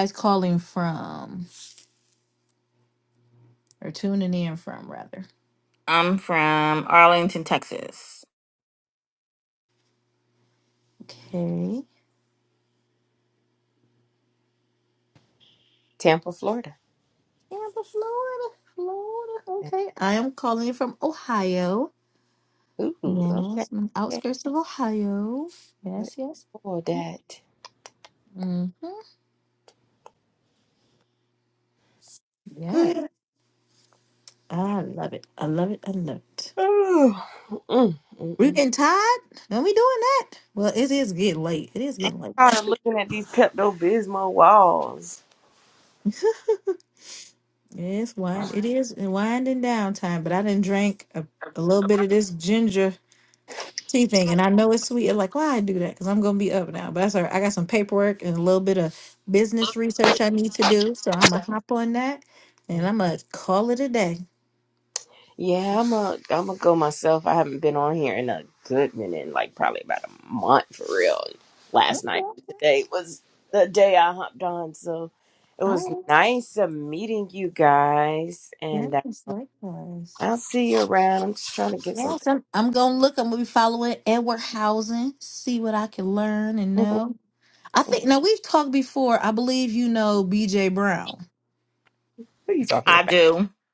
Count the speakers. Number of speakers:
3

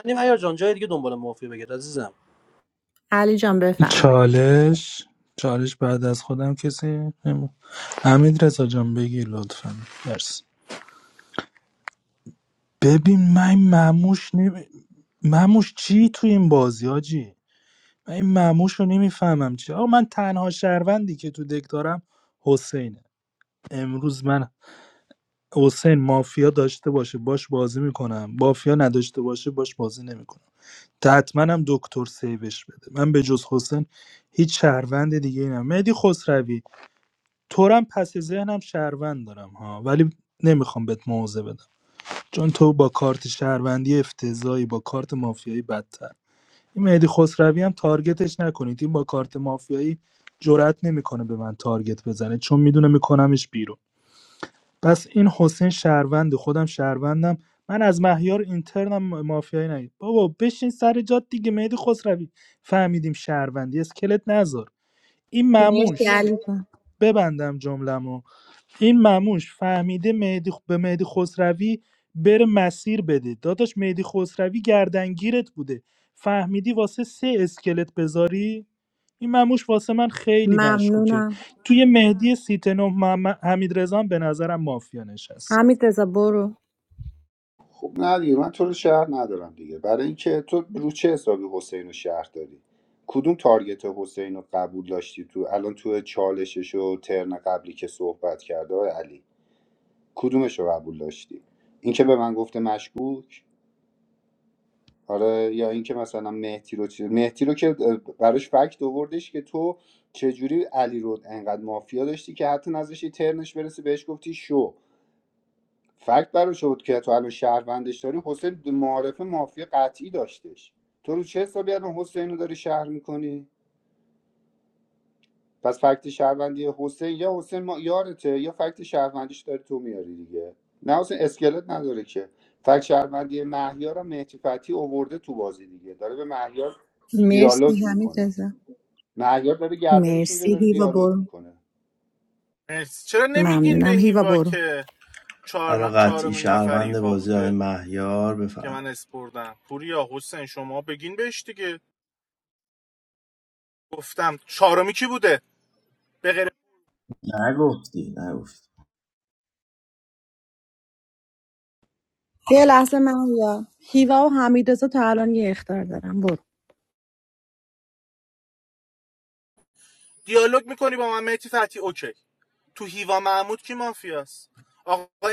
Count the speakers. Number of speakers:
6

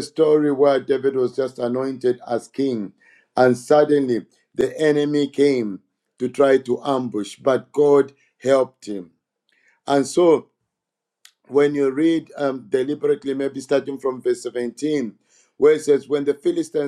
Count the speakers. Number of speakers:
1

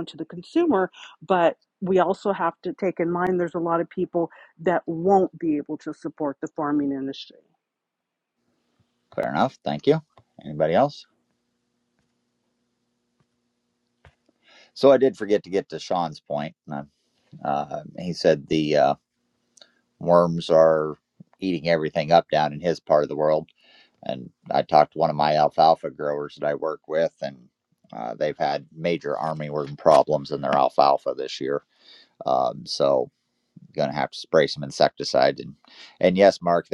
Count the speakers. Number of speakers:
2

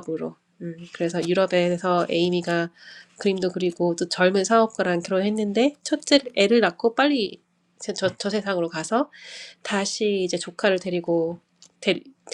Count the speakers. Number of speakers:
1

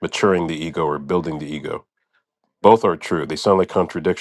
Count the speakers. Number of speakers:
1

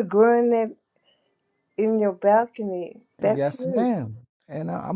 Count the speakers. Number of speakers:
2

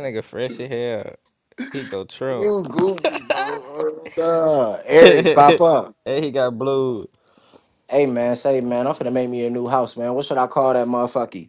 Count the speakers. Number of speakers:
2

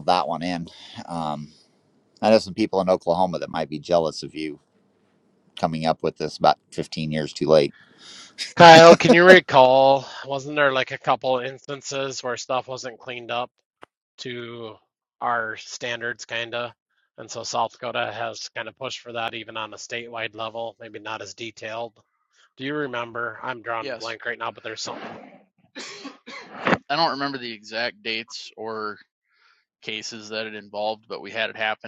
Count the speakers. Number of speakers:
3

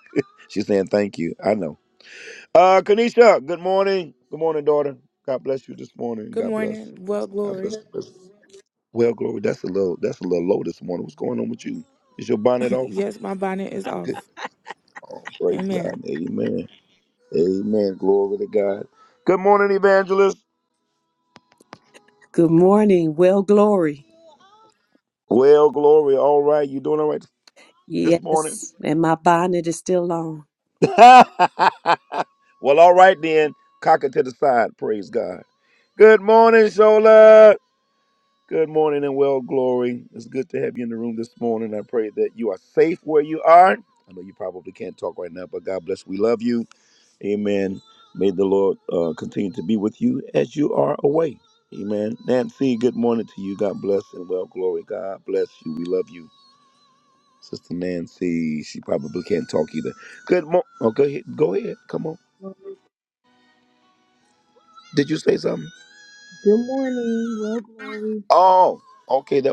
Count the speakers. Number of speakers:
4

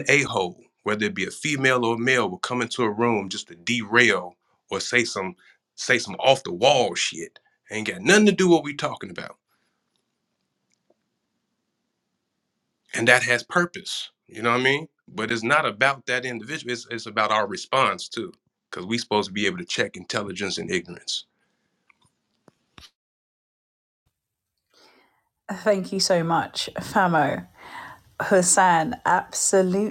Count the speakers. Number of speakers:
2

